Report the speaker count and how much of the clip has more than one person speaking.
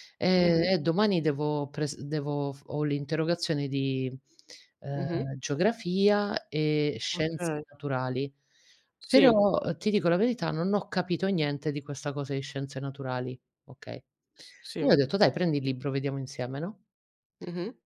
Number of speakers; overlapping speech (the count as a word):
two, about 6%